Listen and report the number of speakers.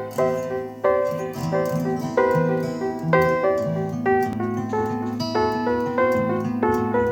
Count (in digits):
0